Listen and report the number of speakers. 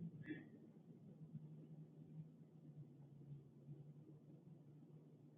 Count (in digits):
0